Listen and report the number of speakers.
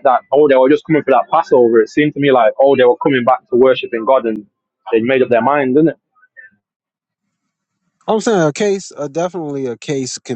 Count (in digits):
2